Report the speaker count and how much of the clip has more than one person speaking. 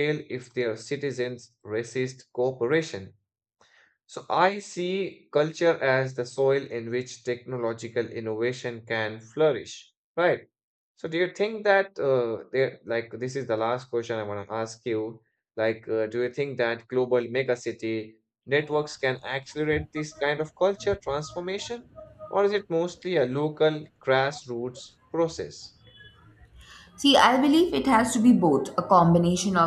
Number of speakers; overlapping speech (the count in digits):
2, no overlap